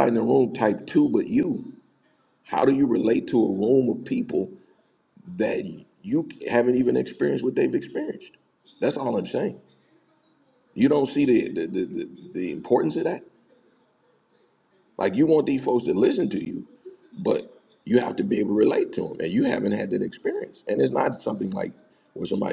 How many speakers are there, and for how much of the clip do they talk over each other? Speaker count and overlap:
1, no overlap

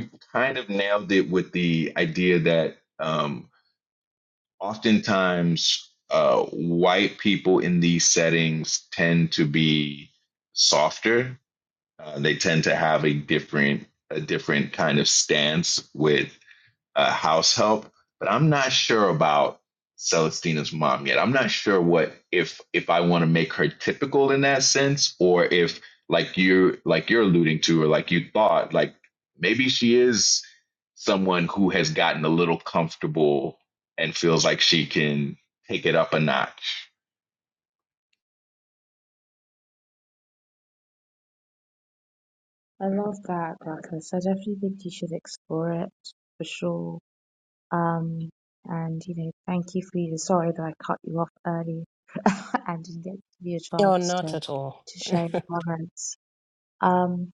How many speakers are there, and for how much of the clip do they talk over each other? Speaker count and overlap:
3, about 1%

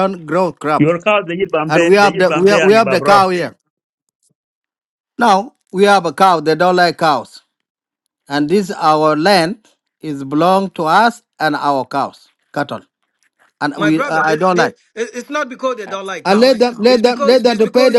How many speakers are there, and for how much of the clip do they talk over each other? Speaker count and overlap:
3, about 21%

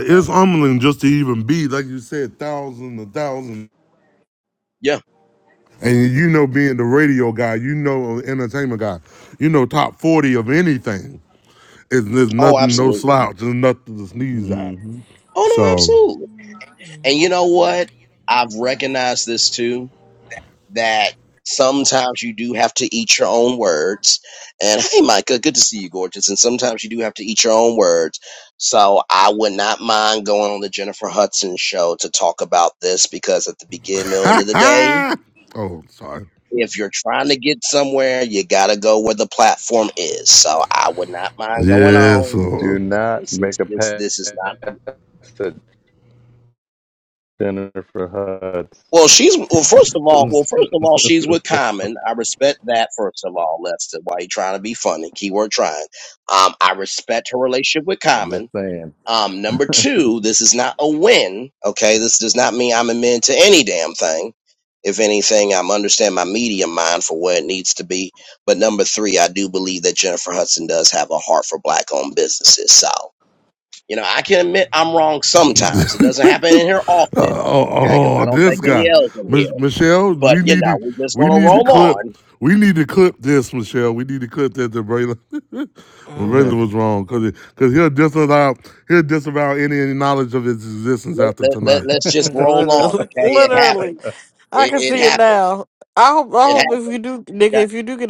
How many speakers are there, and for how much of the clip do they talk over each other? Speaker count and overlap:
4, about 13%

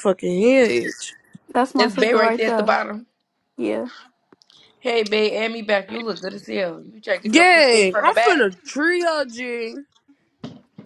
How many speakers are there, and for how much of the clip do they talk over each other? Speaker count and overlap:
3, about 19%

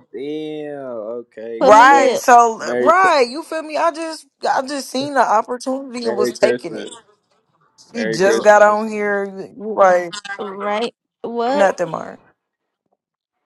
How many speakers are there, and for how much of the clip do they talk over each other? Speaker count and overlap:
3, about 21%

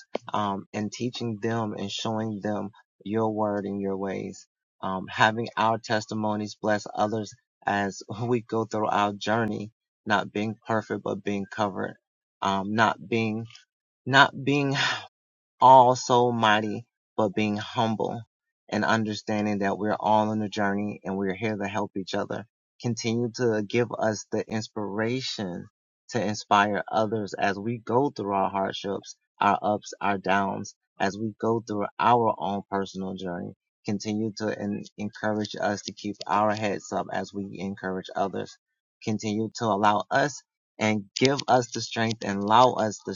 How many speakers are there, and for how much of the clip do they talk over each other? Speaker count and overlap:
1, no overlap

